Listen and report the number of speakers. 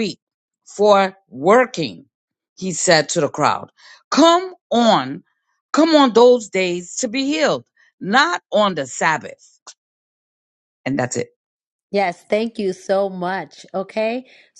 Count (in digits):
2